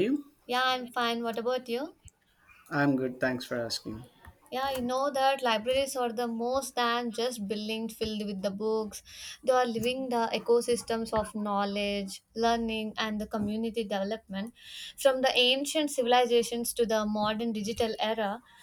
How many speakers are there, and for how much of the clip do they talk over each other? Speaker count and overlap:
two, no overlap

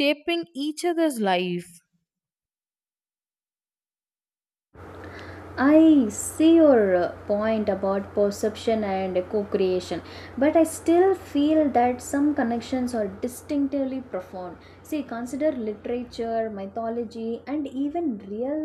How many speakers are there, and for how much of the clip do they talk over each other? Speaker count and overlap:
two, no overlap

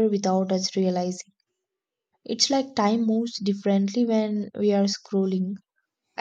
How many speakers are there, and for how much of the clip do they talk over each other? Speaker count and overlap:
one, no overlap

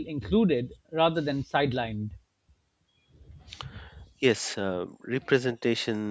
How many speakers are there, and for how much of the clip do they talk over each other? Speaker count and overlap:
two, no overlap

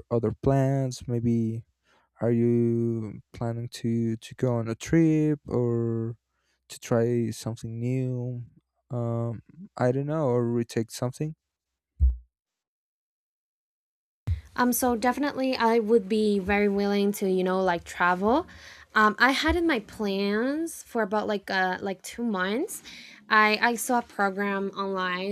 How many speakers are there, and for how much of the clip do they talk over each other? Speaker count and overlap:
two, no overlap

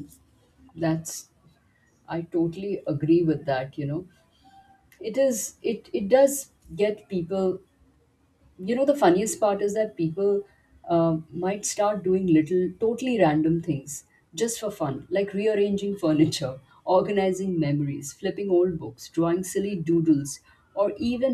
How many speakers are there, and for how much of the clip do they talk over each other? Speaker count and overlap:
one, no overlap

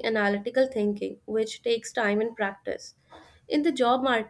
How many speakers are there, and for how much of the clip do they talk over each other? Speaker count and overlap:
one, no overlap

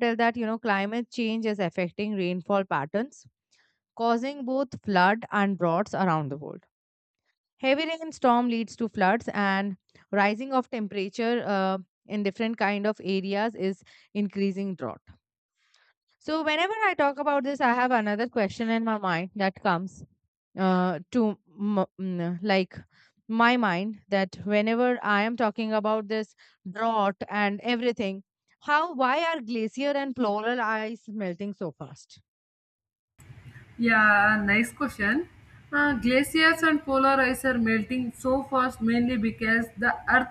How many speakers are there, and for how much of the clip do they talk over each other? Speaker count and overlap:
two, no overlap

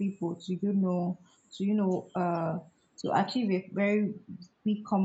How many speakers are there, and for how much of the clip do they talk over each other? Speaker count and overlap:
one, no overlap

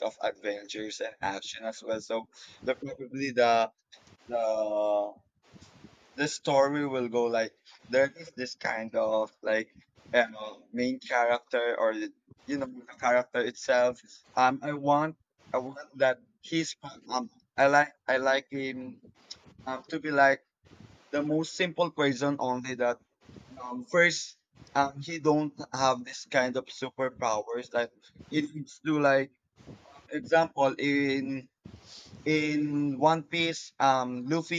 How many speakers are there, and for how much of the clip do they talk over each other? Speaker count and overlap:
one, no overlap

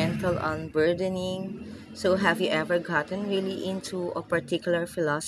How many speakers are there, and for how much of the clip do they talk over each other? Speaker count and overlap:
one, no overlap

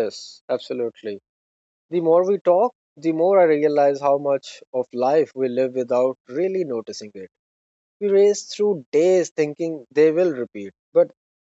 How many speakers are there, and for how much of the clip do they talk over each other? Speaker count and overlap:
one, no overlap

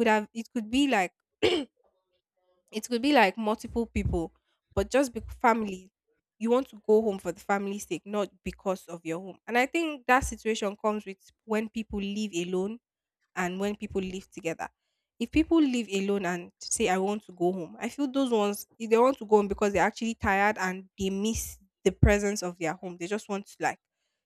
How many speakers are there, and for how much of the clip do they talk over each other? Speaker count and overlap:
one, no overlap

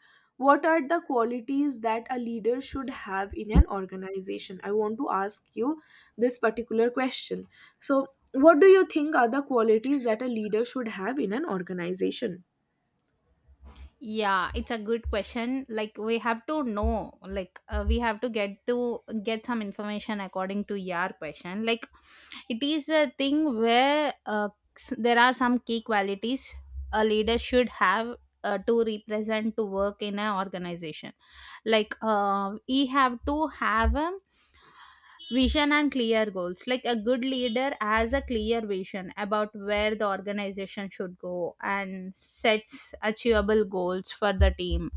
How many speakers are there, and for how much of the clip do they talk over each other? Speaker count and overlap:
two, no overlap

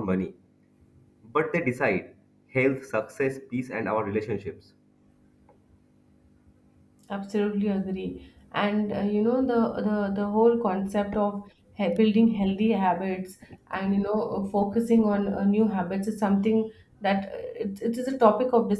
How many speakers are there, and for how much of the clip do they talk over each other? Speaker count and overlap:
two, no overlap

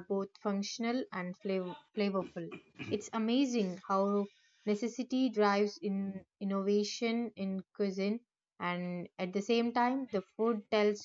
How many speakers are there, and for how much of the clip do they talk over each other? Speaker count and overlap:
one, no overlap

